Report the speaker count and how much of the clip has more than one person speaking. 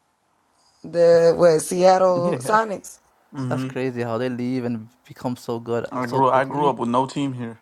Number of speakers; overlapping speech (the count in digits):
3, about 15%